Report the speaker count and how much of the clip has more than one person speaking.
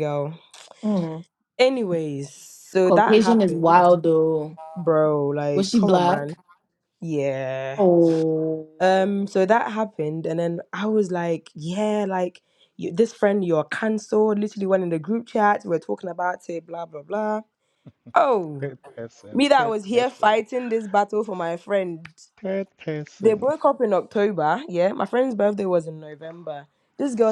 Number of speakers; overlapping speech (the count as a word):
three, about 11%